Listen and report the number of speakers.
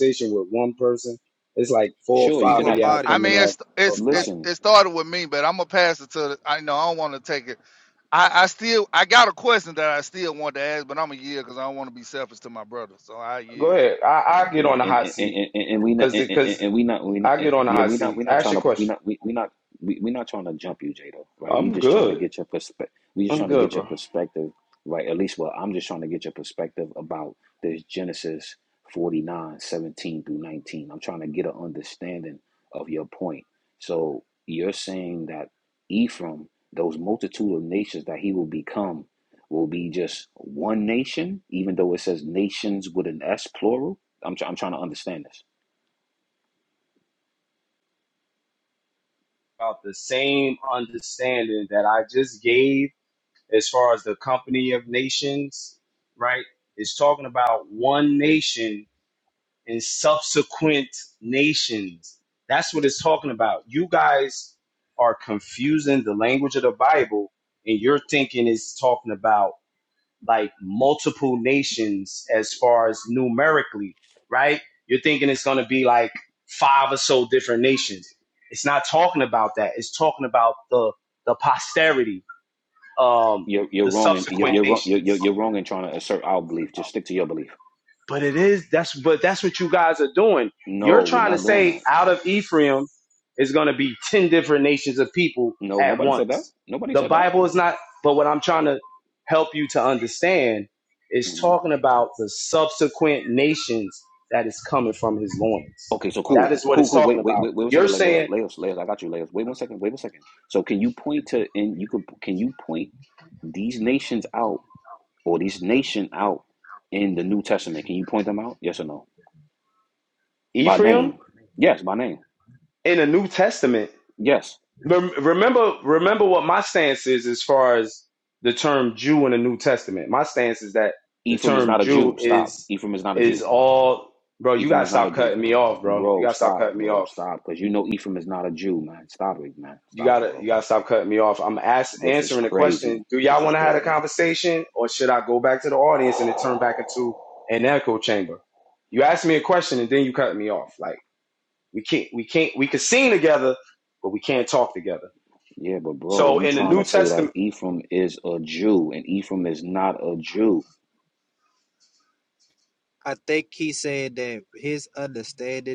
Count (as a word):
four